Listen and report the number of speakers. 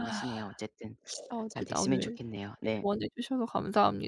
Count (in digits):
2